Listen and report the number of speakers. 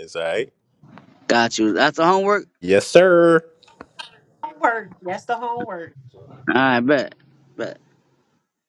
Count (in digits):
3